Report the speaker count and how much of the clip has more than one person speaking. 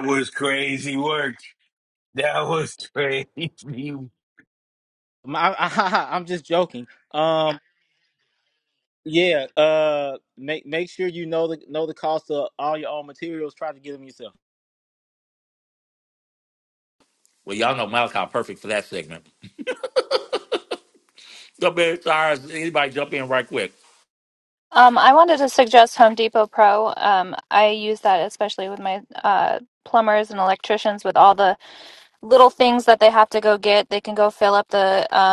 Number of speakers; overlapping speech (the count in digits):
4, no overlap